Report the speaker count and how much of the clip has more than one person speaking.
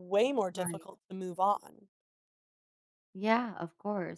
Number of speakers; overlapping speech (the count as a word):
two, about 7%